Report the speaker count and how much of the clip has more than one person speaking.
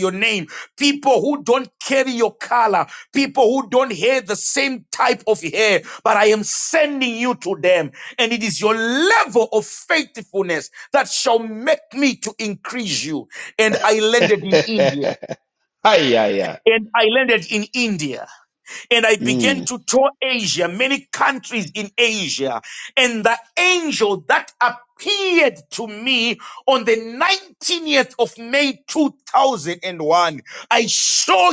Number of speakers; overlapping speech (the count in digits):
2, about 1%